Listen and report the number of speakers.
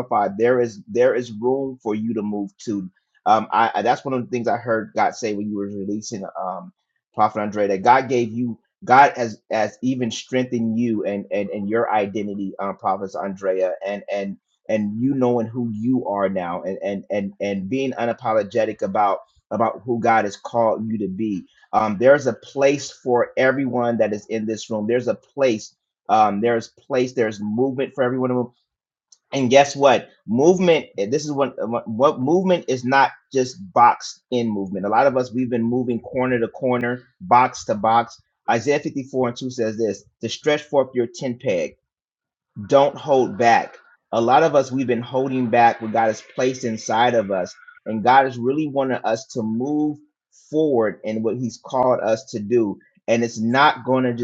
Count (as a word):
one